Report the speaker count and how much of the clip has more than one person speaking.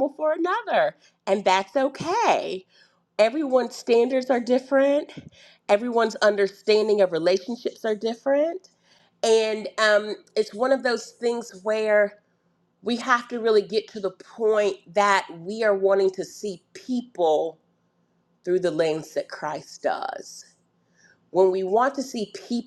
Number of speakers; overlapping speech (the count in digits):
1, no overlap